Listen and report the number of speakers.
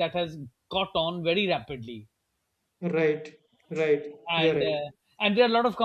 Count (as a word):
two